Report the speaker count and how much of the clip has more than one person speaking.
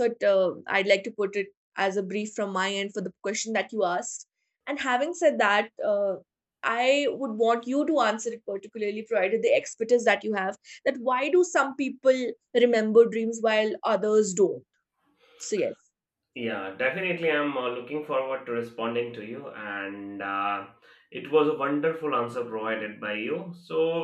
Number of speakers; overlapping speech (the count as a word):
two, no overlap